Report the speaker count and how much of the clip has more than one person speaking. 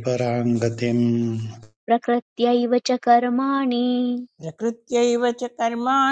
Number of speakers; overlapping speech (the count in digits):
3, no overlap